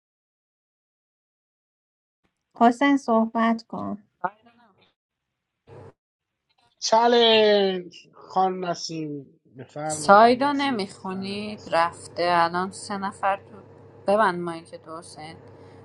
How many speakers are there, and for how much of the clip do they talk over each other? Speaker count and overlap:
three, about 12%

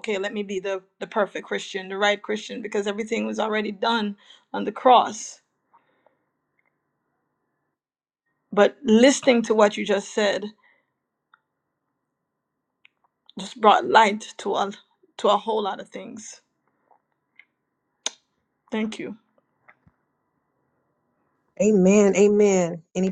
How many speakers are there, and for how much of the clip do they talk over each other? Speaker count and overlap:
two, no overlap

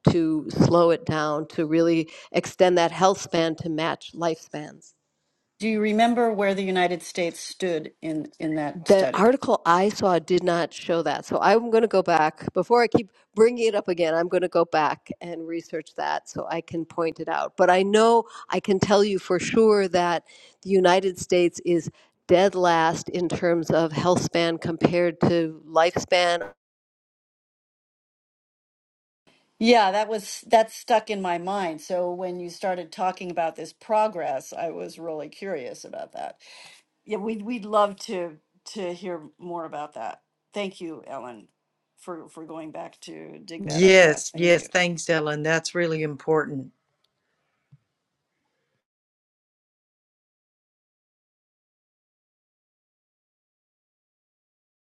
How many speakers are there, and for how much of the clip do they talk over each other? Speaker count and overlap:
three, about 3%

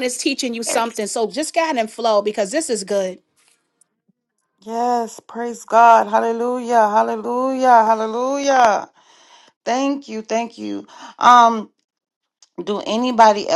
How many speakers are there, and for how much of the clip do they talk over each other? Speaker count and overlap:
two, no overlap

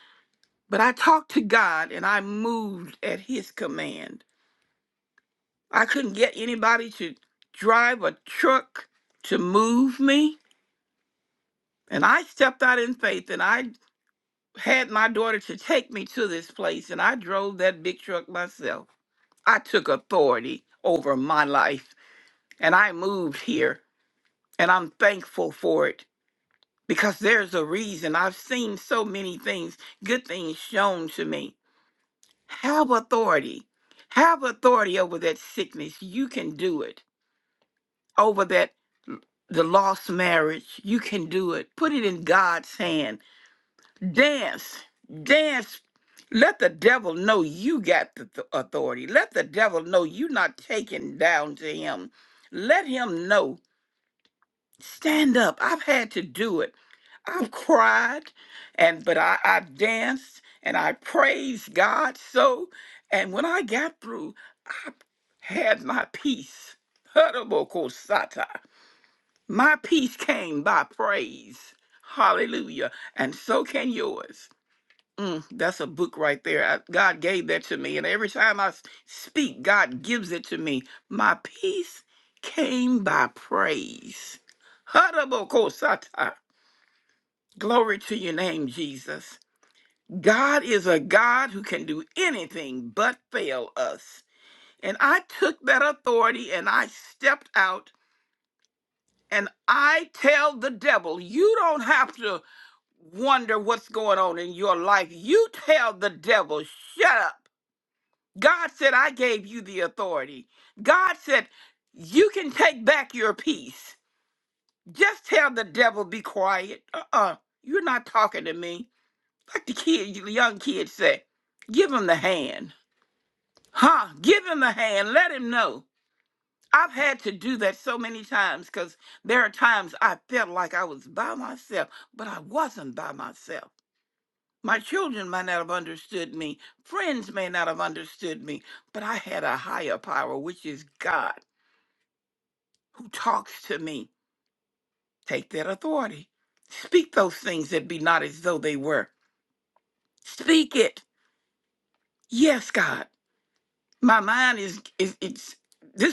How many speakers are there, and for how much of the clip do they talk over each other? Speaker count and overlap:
one, no overlap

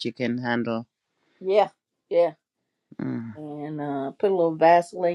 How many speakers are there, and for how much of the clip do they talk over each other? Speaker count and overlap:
two, no overlap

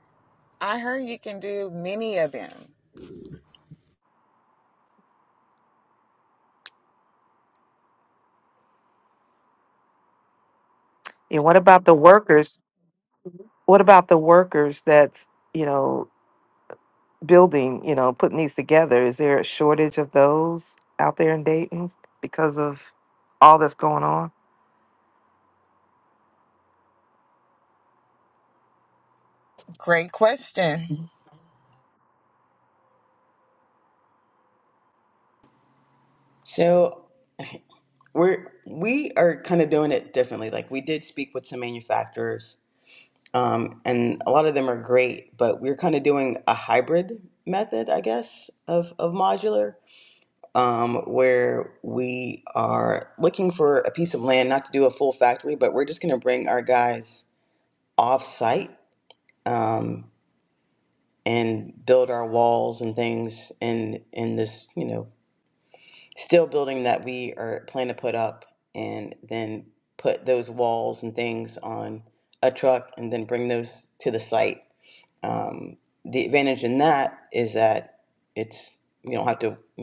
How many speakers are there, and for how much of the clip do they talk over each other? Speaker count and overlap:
three, no overlap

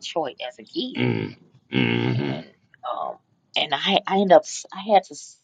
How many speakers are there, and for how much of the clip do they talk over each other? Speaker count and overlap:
two, about 8%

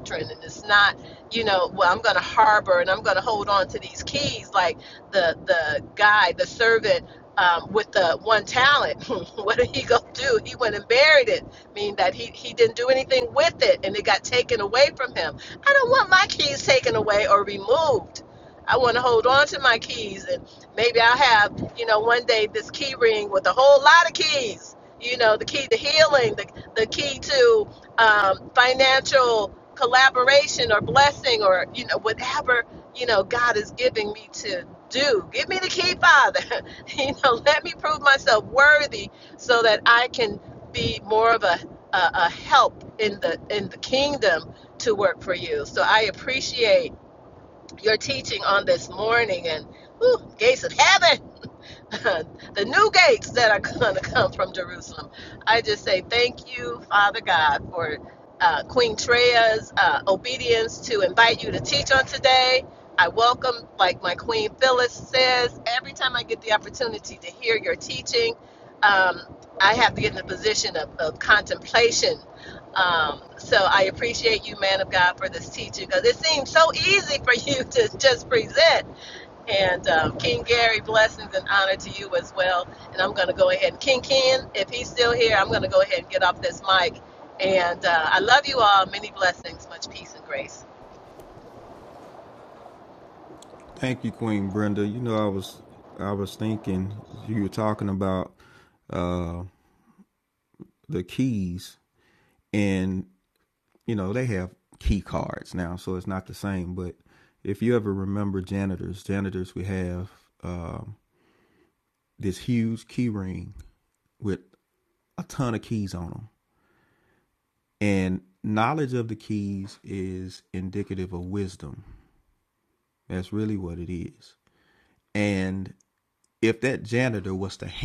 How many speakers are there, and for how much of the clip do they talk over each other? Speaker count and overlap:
two, no overlap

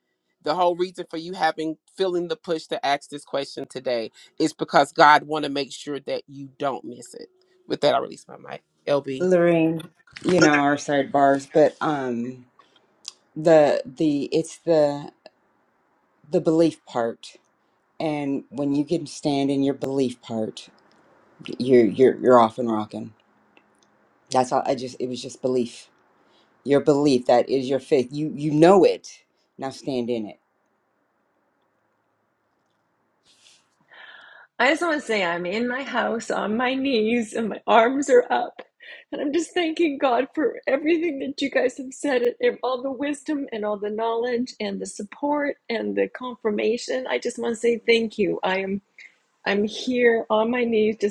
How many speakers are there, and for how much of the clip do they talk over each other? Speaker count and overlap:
three, under 1%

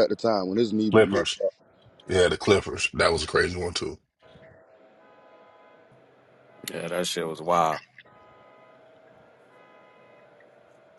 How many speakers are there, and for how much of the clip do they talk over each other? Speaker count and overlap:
three, about 4%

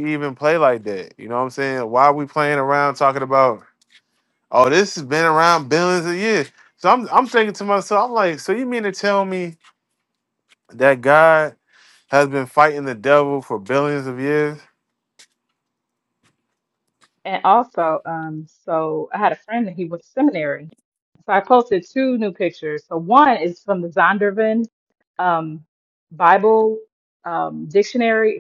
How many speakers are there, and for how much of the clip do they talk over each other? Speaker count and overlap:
two, no overlap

